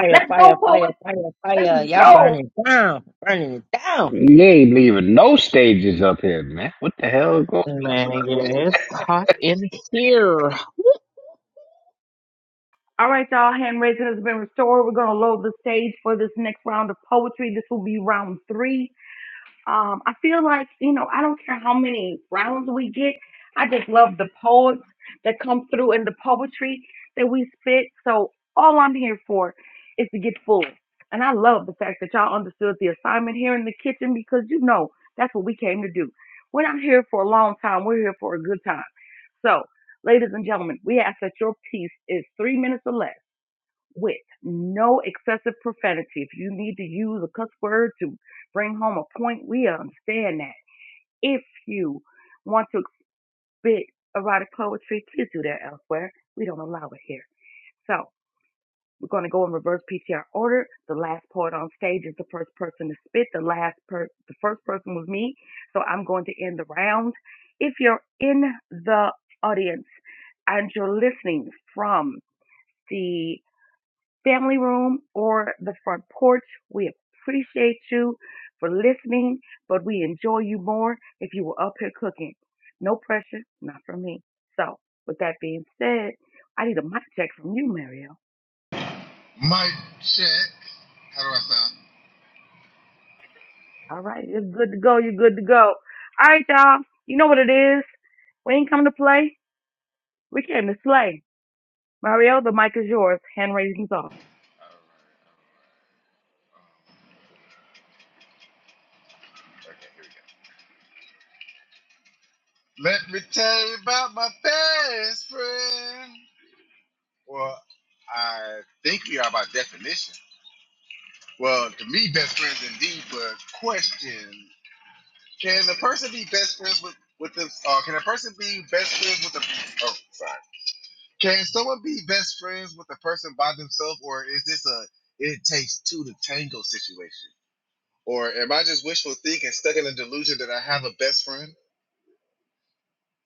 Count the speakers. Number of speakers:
five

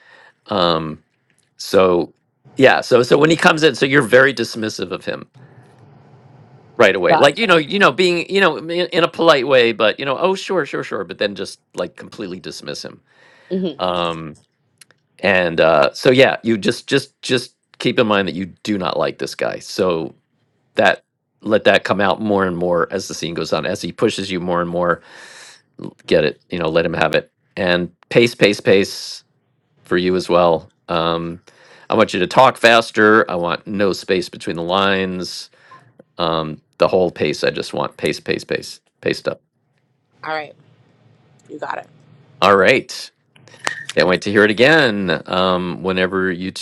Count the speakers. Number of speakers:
two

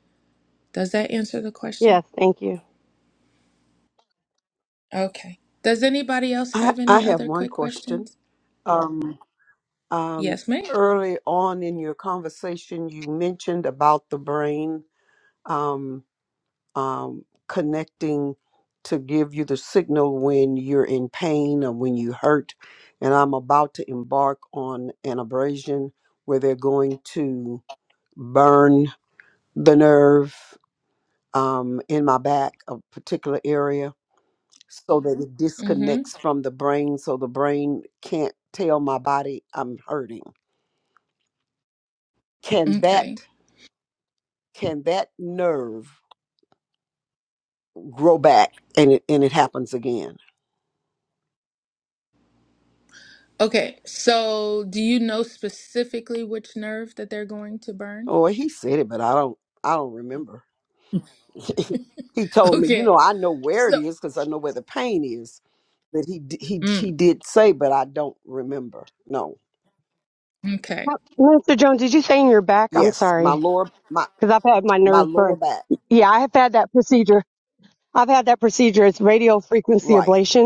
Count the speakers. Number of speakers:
three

